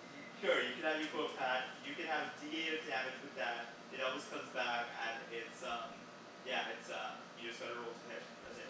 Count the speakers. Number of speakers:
1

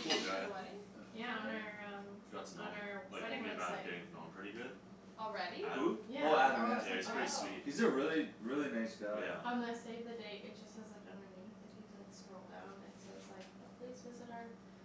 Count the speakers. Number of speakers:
4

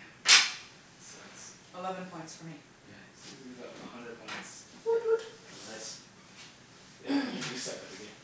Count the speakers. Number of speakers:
3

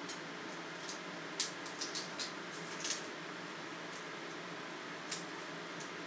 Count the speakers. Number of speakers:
0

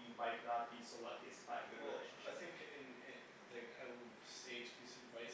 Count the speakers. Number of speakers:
2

